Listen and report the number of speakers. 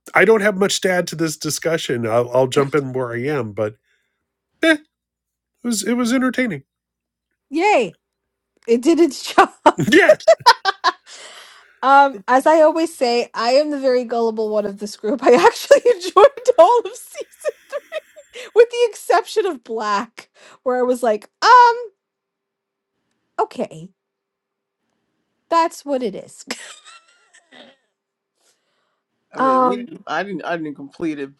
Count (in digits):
3